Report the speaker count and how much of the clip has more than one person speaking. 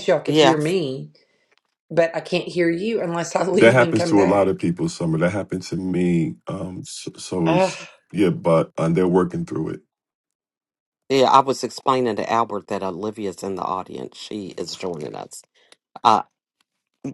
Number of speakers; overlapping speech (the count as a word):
three, about 8%